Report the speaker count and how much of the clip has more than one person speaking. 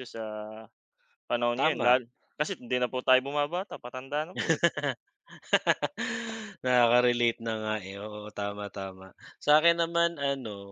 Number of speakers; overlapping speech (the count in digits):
2, about 4%